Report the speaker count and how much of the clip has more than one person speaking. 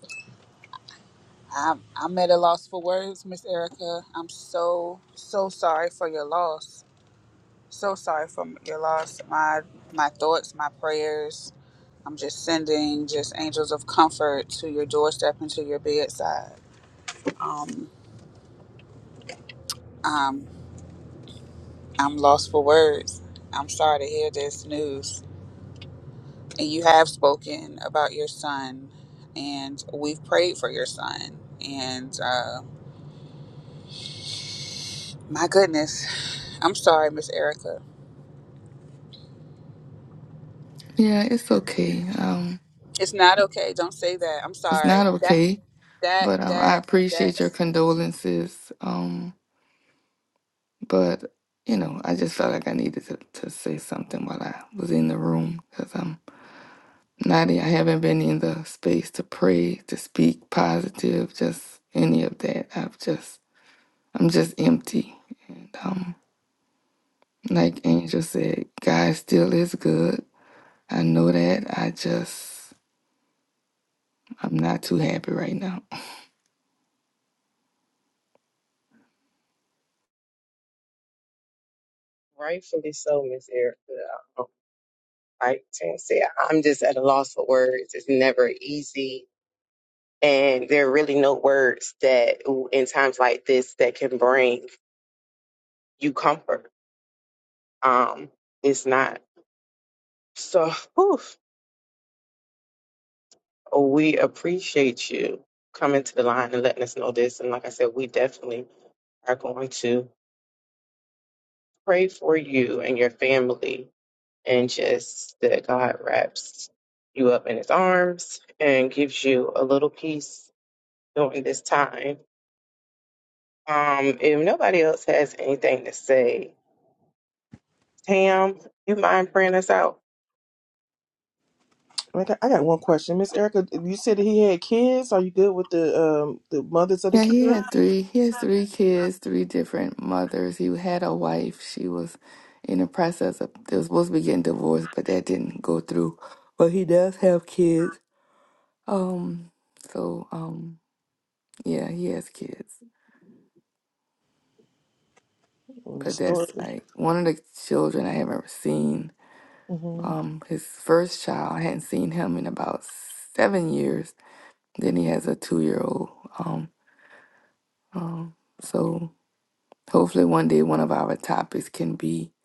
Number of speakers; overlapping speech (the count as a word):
four, about 2%